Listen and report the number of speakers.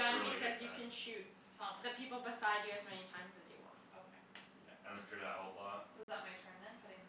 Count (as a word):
three